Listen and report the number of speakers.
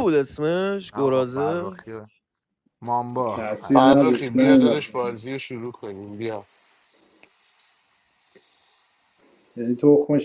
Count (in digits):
4